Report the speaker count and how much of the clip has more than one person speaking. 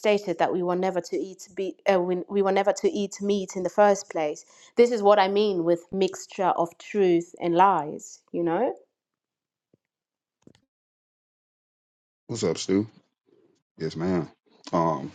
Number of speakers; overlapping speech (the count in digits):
2, no overlap